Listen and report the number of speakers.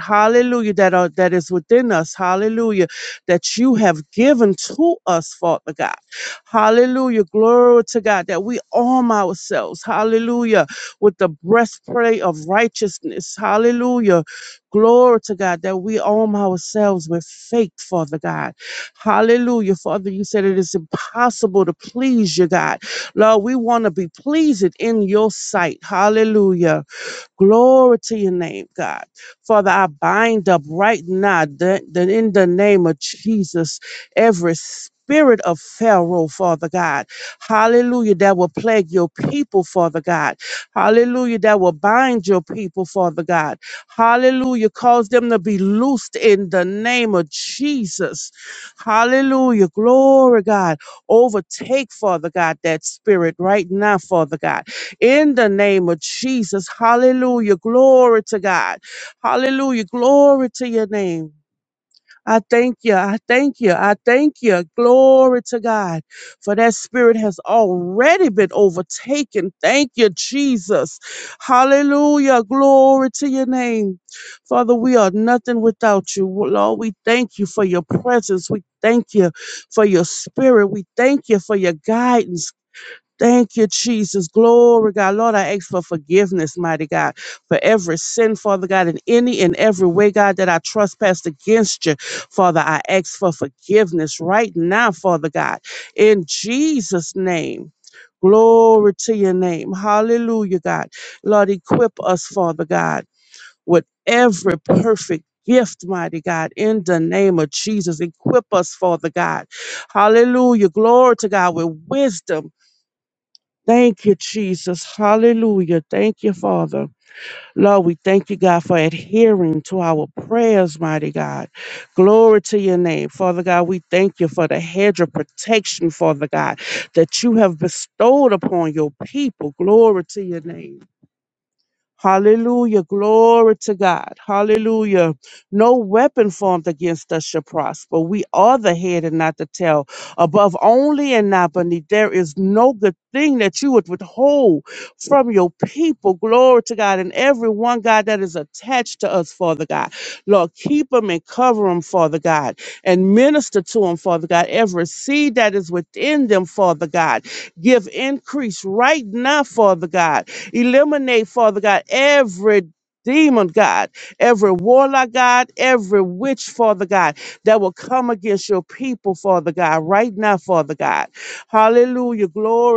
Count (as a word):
one